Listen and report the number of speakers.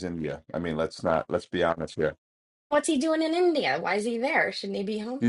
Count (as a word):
two